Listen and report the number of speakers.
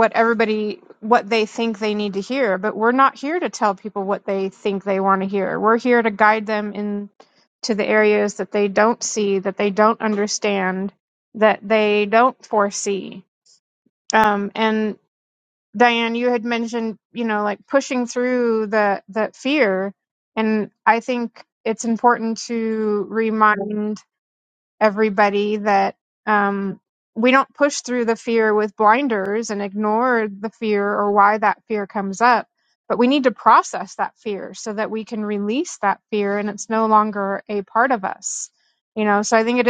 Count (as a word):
one